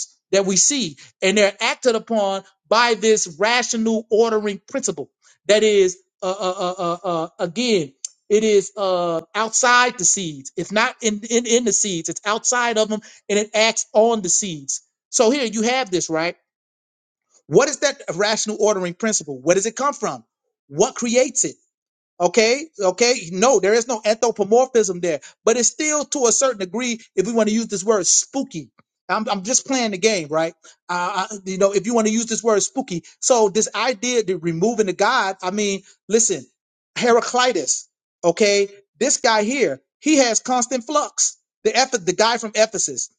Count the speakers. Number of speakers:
1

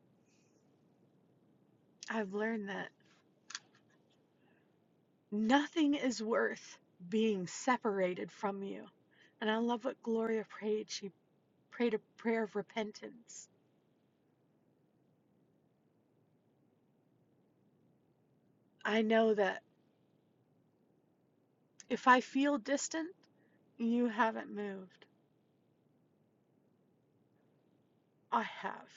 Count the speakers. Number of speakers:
1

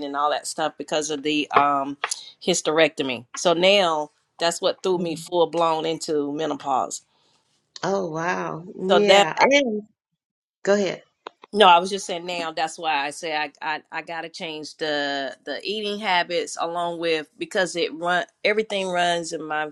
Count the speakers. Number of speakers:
2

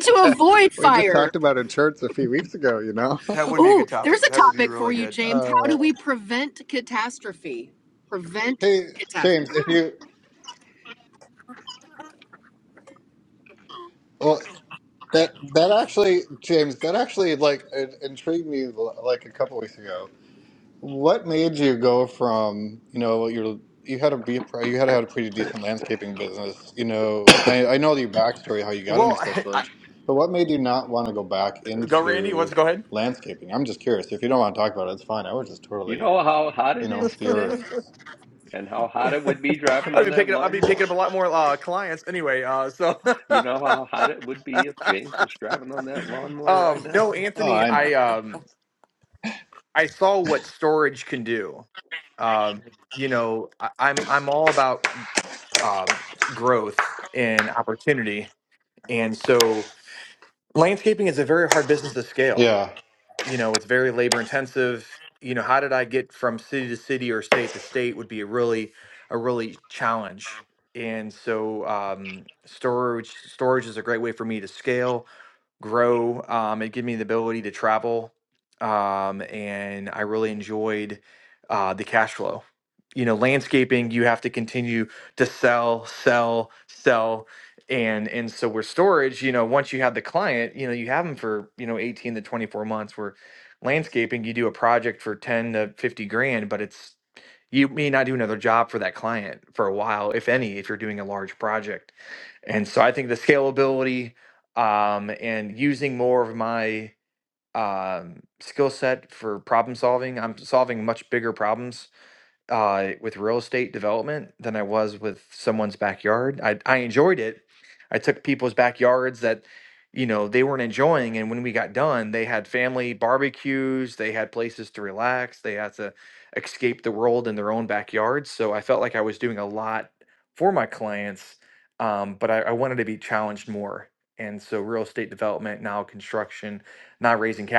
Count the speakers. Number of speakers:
4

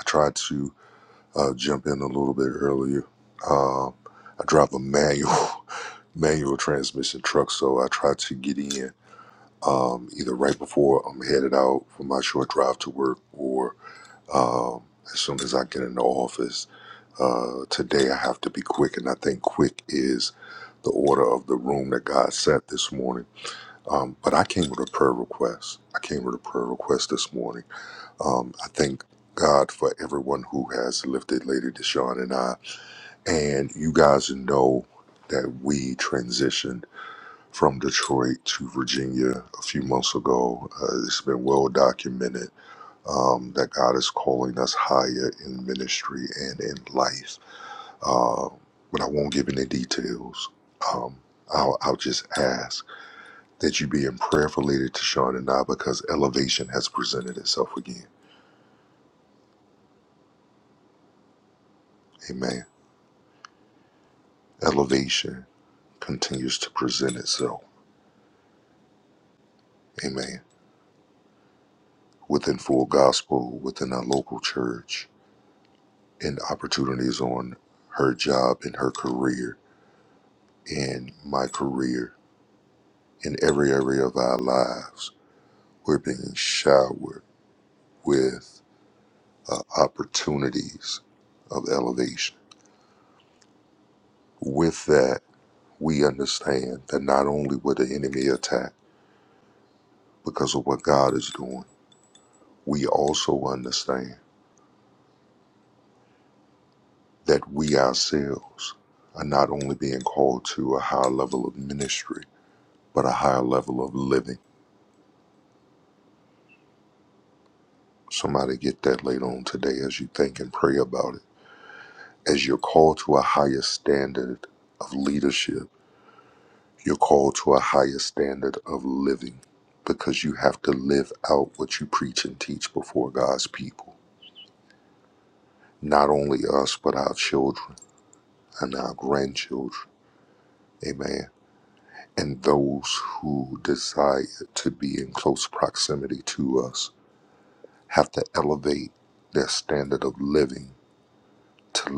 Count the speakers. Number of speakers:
1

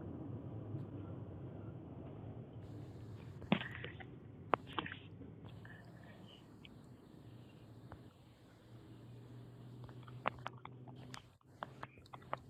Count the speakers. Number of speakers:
0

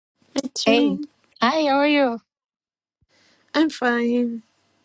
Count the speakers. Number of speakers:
2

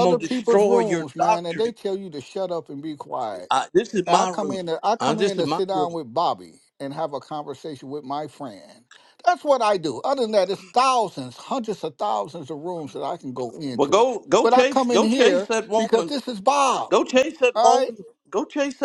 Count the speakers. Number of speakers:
2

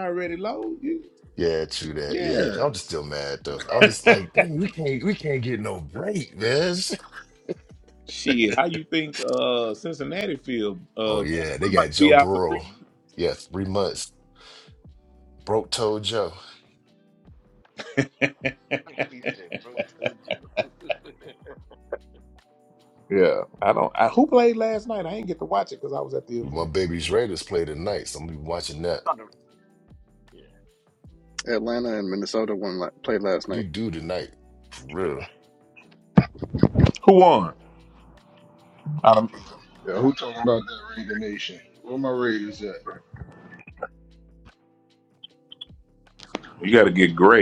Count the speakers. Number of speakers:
5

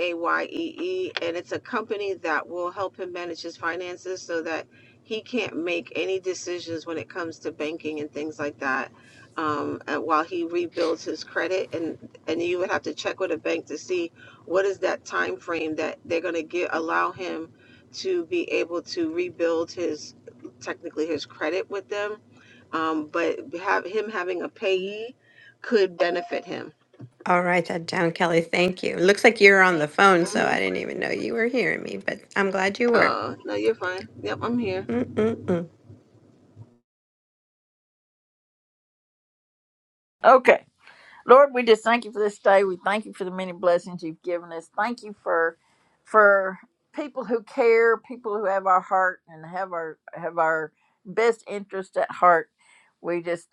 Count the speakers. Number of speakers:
3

